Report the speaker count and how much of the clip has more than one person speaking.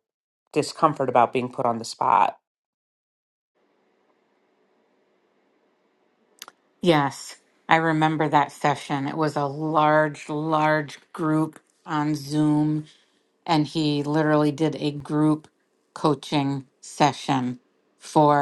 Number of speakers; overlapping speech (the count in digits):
2, no overlap